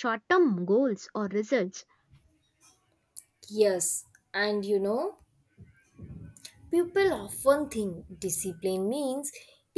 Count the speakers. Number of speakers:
2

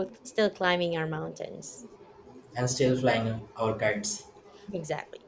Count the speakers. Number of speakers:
2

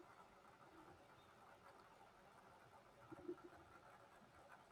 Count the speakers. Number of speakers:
0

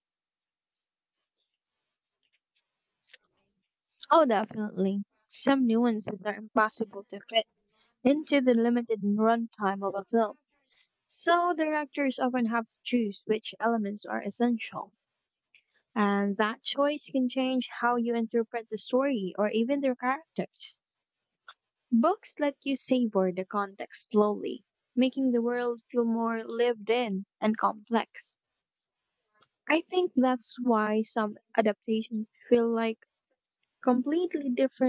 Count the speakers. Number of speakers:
1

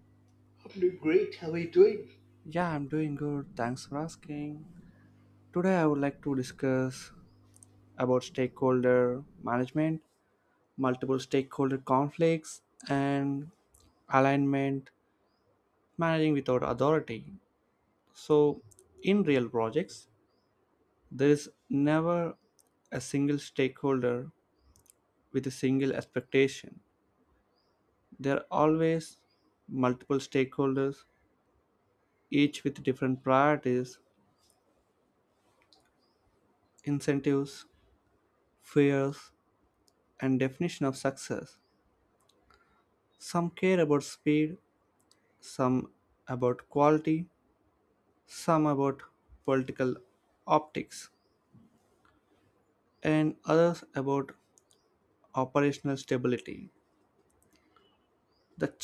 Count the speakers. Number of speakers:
2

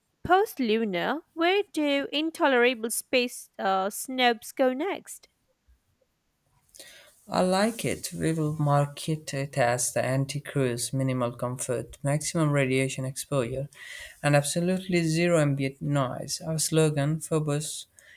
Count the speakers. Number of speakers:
2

